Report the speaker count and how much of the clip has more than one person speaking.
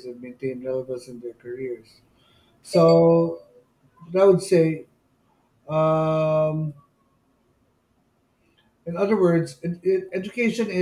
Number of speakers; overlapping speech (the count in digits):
1, no overlap